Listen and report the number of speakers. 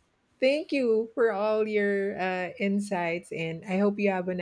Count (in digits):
1